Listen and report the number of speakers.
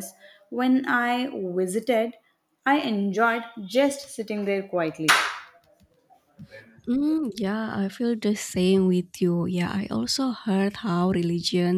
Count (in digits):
2